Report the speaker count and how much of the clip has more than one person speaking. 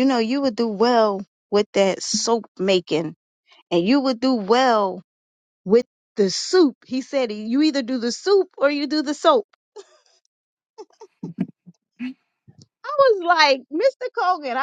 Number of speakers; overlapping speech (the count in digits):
1, no overlap